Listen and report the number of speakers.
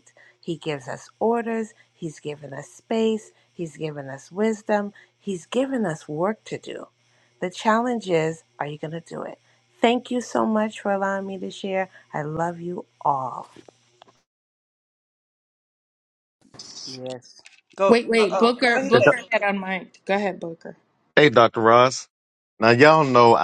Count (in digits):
4